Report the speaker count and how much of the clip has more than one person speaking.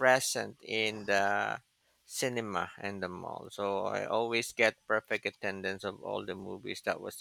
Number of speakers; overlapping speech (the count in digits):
1, no overlap